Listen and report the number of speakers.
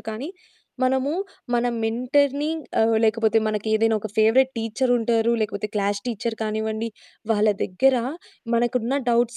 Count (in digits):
1